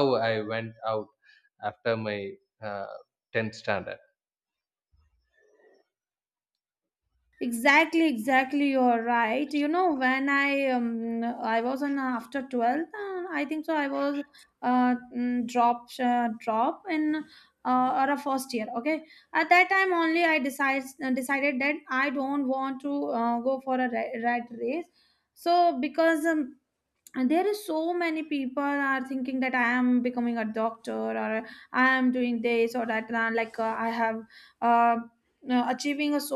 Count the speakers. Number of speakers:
2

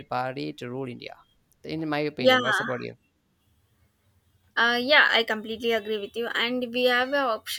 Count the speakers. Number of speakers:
2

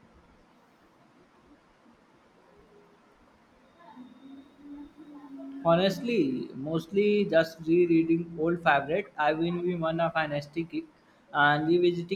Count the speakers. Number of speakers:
1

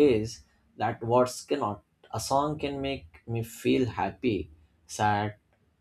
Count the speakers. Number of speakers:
1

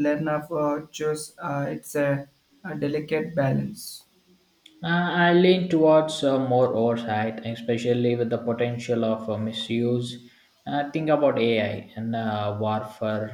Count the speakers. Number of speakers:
2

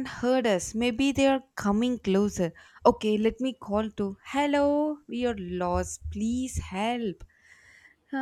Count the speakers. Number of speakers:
1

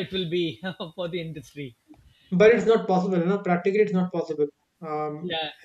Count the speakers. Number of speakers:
2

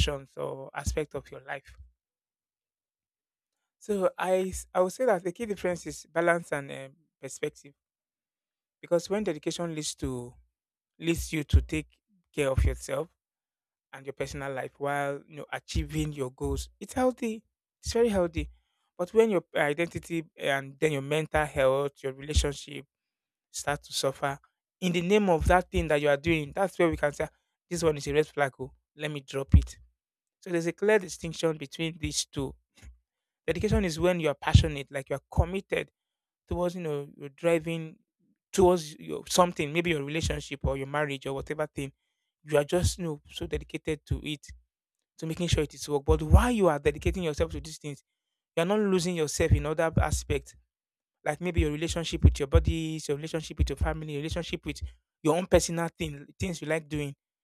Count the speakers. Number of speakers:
1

